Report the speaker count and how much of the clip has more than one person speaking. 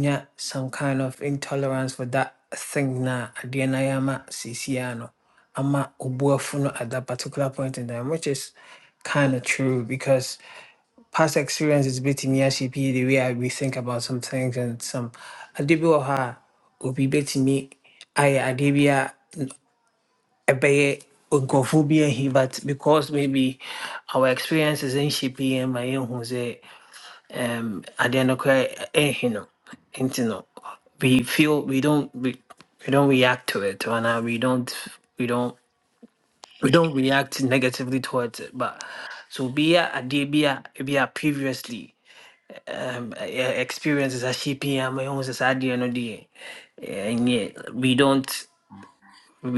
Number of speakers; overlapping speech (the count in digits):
1, no overlap